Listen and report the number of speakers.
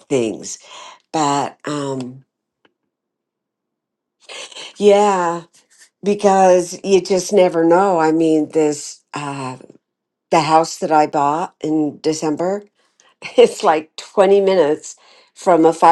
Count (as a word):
one